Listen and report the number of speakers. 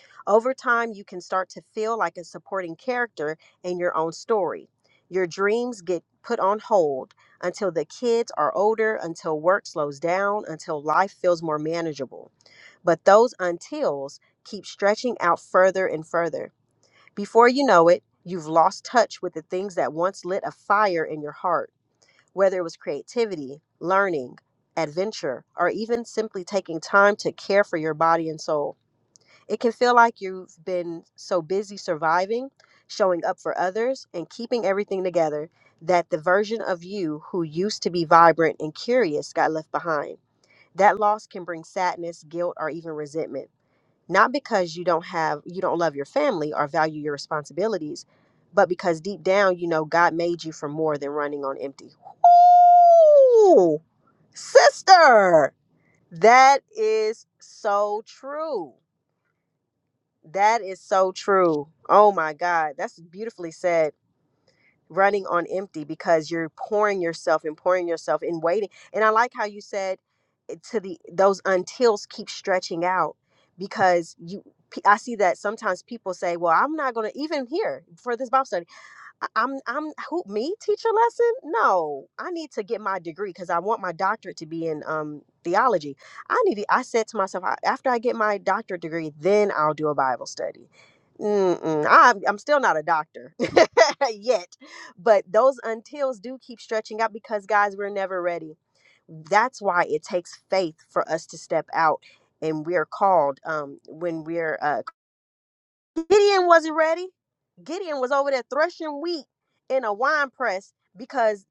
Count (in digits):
1